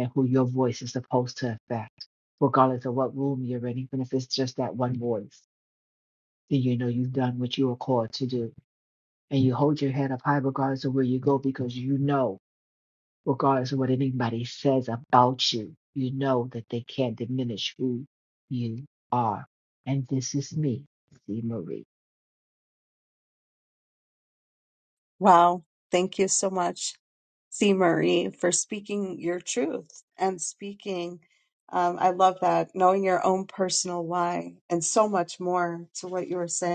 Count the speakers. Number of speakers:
2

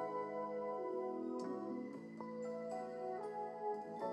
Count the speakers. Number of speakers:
0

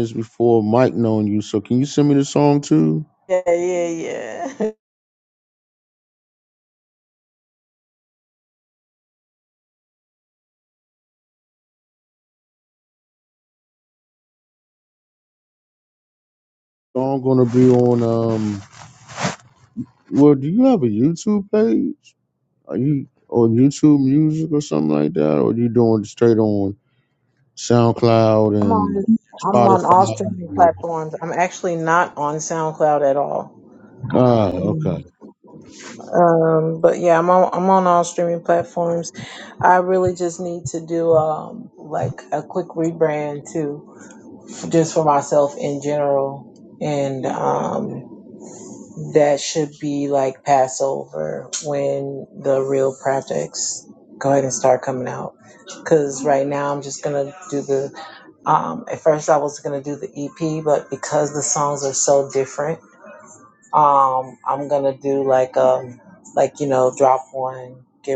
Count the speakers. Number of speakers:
2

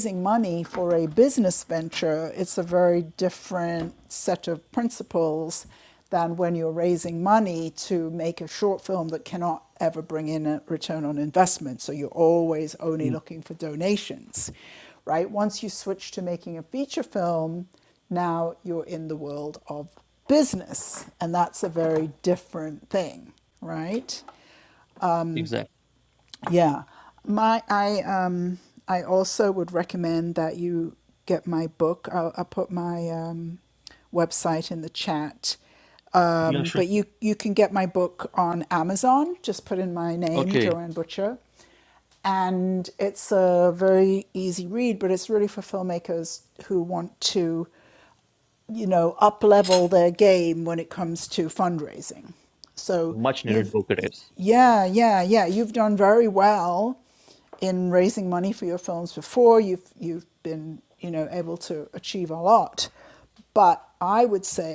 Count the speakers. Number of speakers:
2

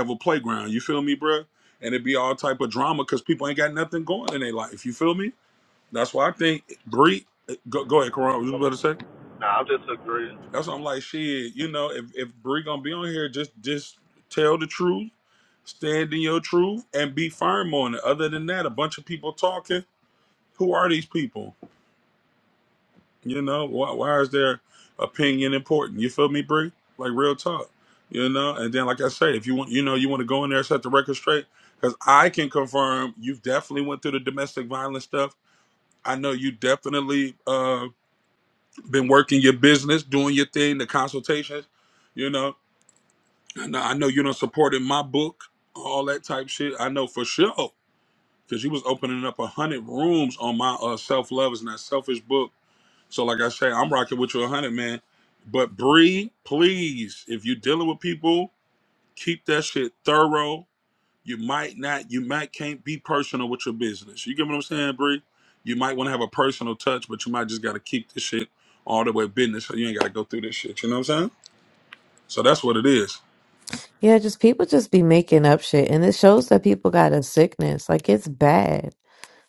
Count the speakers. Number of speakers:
3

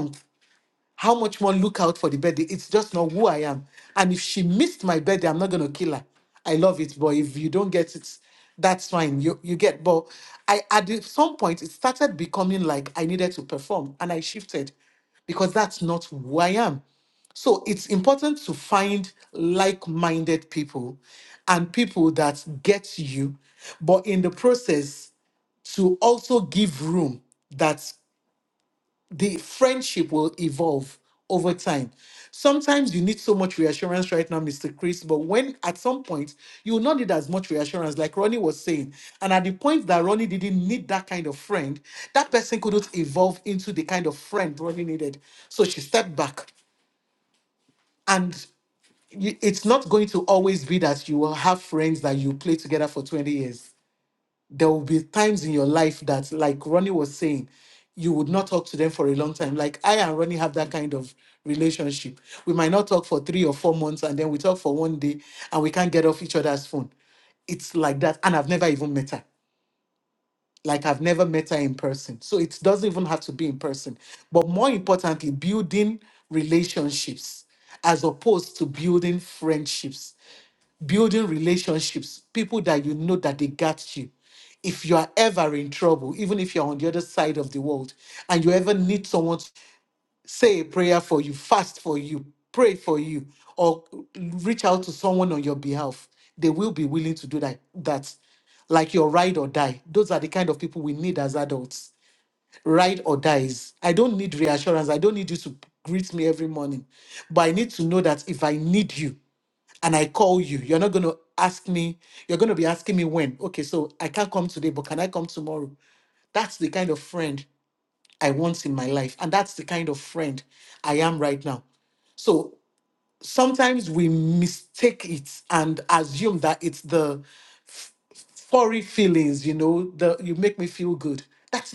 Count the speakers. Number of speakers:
1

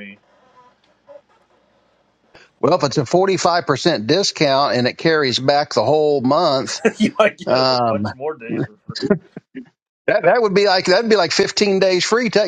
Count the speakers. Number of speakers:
2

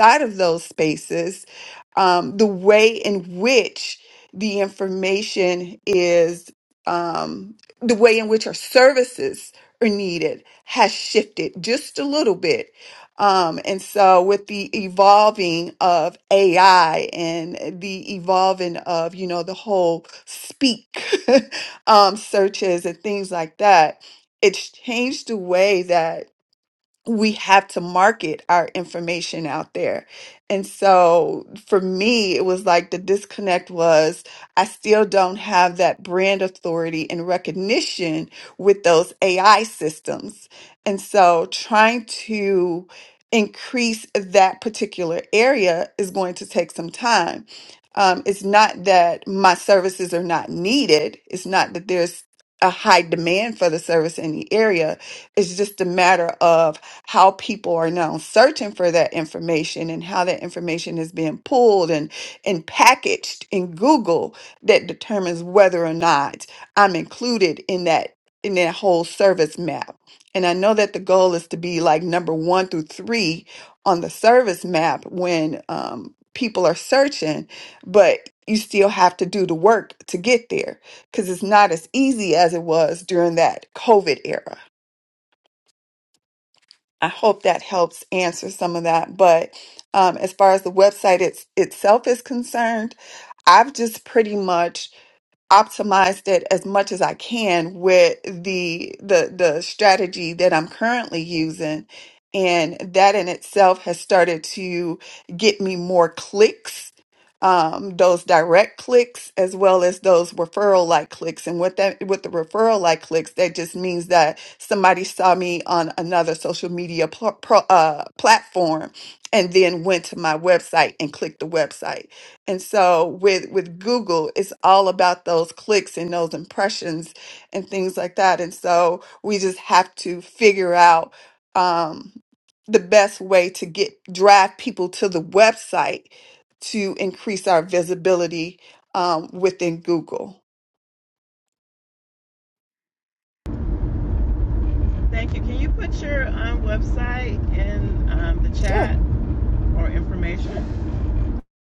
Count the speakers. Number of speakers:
2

